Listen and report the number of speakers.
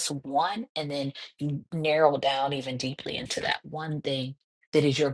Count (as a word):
one